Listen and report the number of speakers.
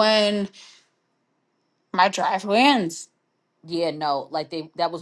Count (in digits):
2